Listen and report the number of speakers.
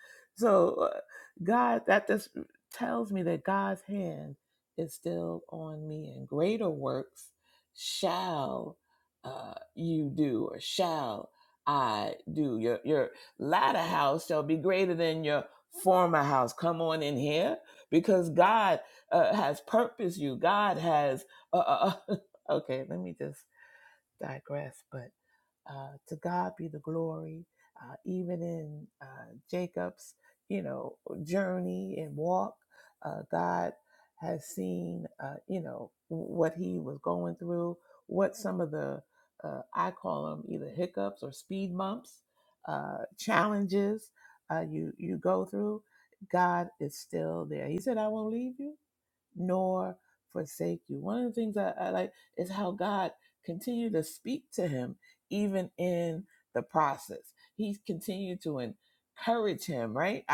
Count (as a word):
one